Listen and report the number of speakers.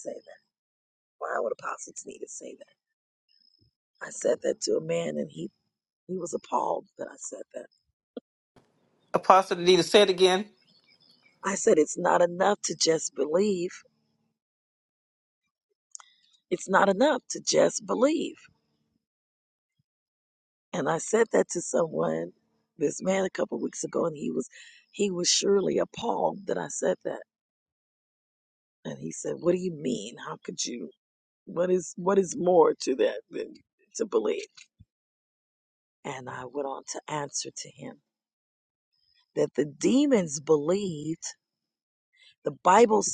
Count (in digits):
2